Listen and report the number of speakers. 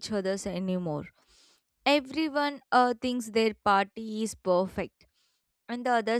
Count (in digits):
1